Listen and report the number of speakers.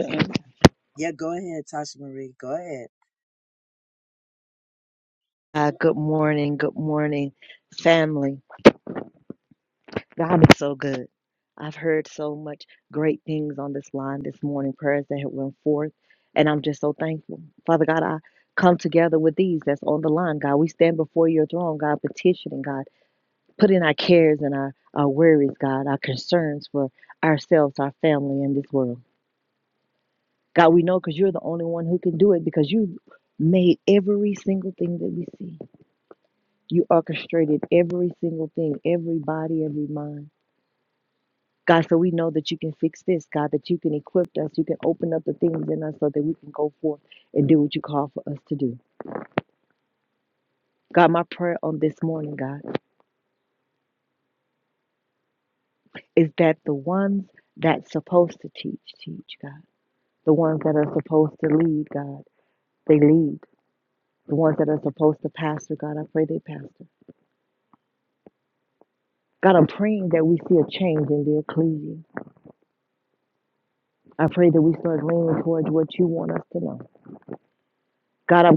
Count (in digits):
2